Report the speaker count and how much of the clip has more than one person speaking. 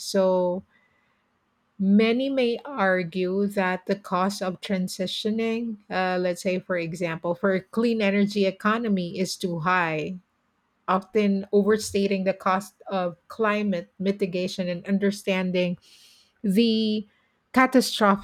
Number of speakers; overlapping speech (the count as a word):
one, no overlap